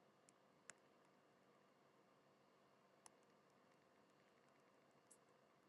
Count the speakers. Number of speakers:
0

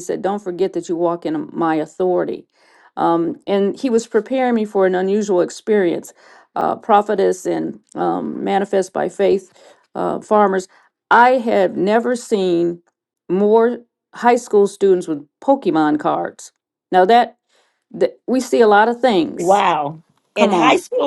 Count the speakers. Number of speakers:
2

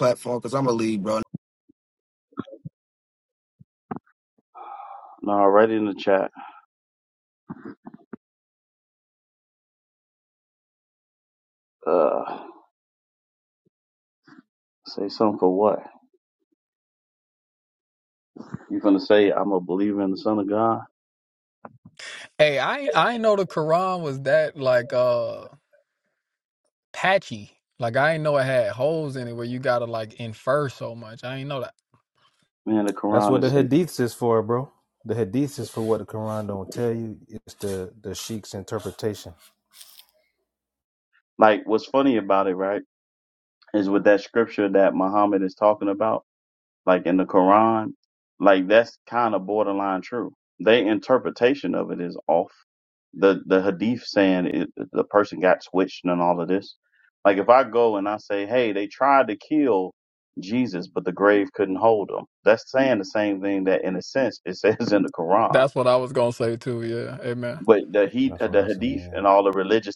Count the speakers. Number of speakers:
4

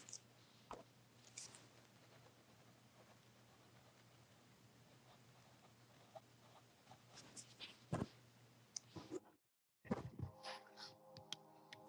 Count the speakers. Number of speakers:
0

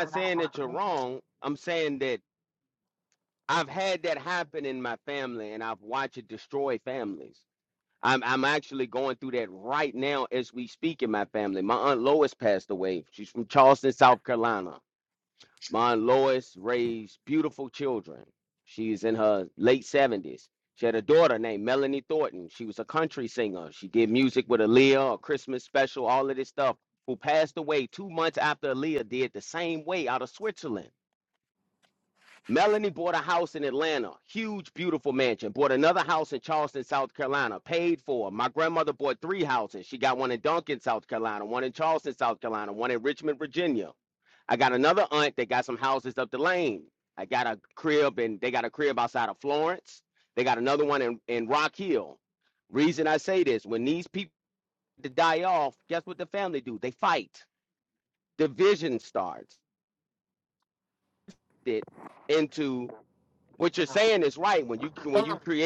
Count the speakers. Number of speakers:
1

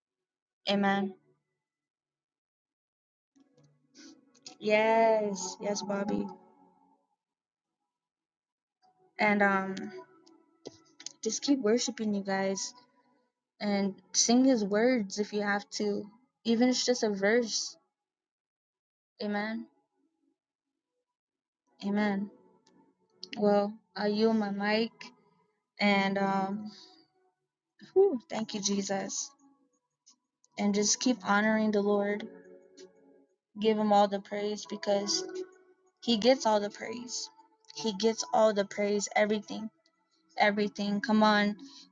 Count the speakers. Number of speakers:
1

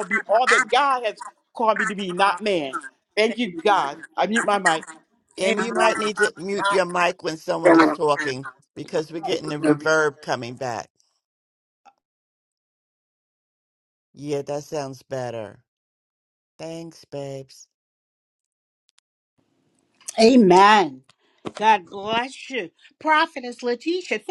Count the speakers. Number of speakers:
3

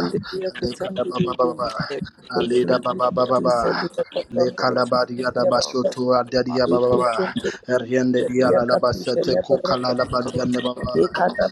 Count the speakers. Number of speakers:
2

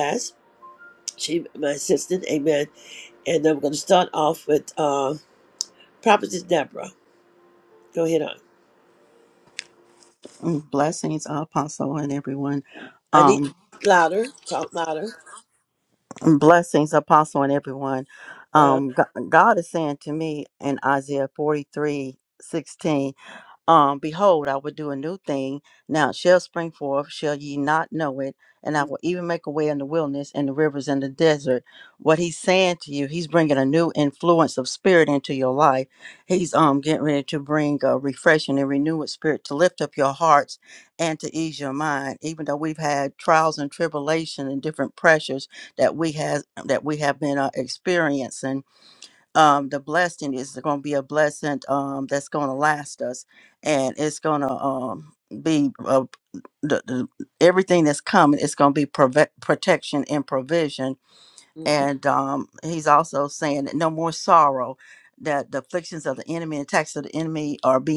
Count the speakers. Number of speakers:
2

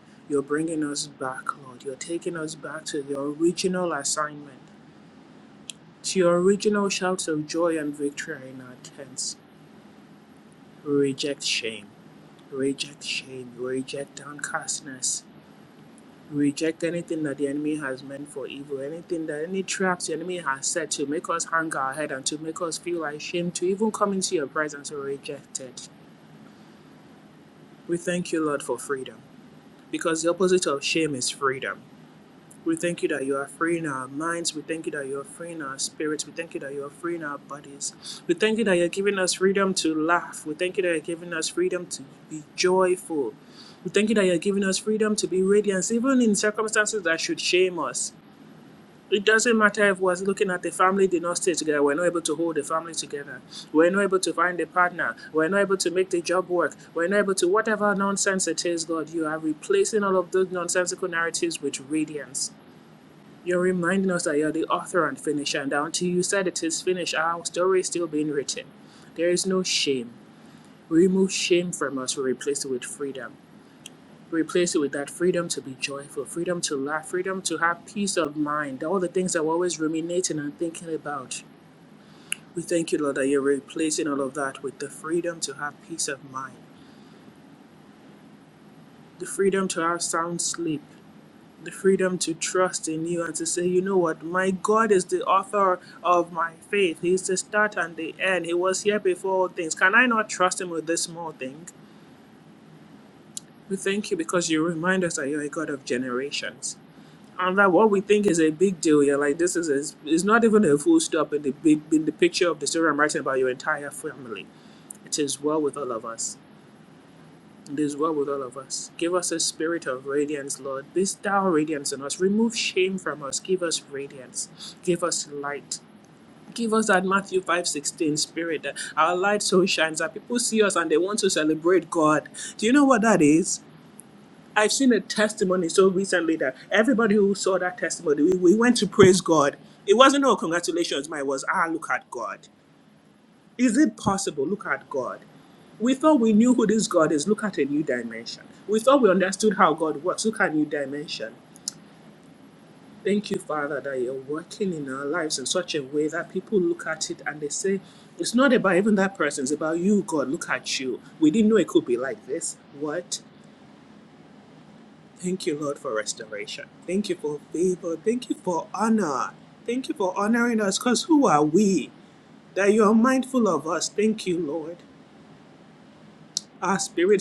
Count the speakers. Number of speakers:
1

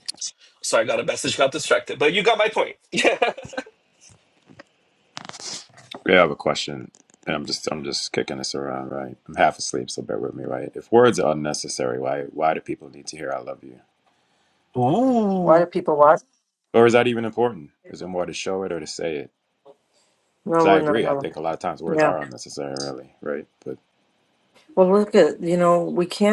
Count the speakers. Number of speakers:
3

